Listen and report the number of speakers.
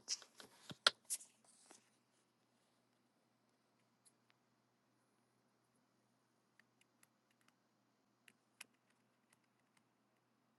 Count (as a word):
zero